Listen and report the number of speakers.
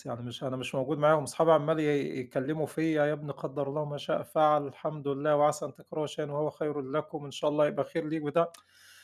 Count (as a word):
one